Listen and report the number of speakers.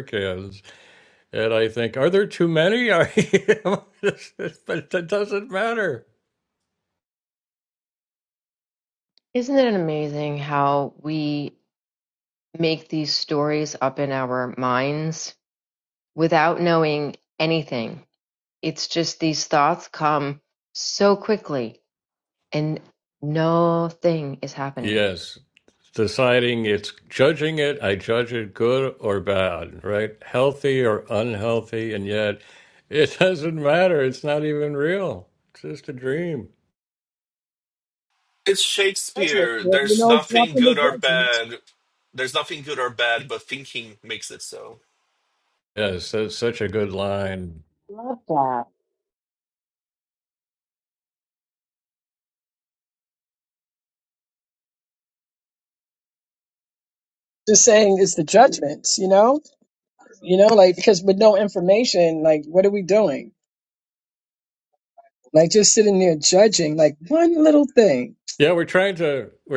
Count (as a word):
four